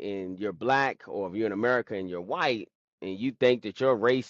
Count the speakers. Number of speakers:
1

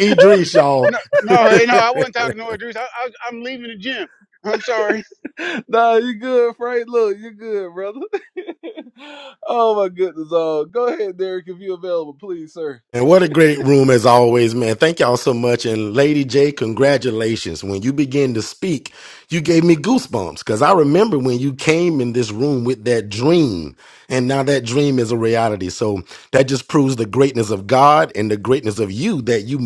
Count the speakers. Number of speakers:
3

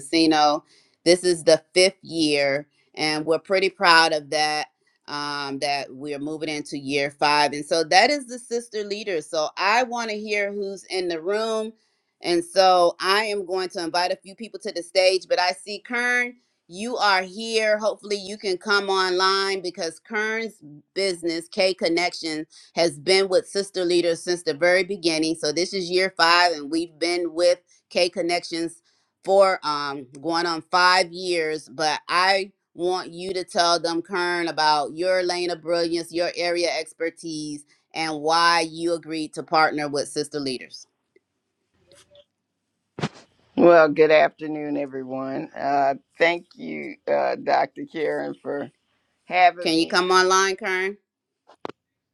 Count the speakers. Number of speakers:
2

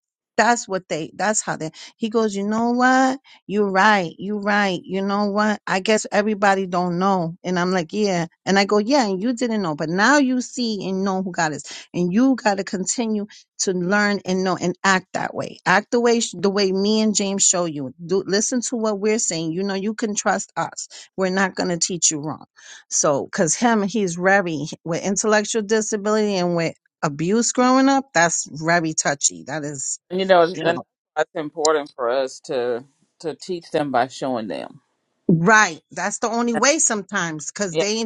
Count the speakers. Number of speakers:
2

